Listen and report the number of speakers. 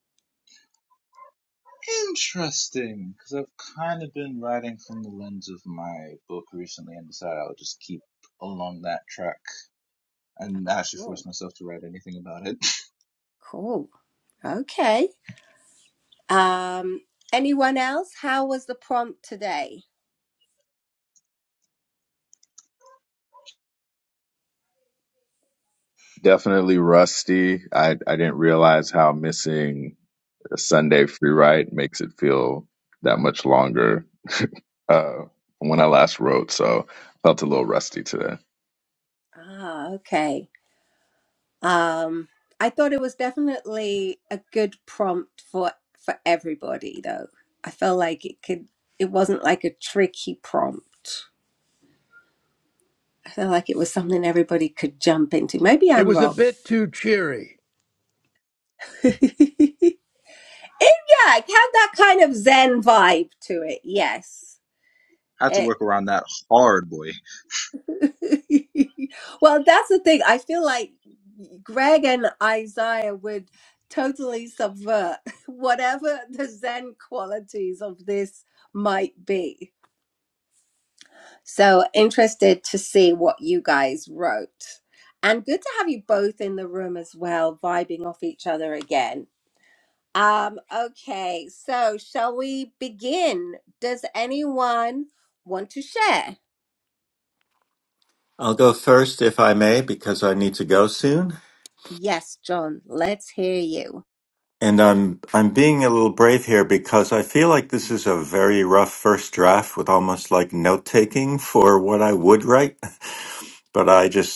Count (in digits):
5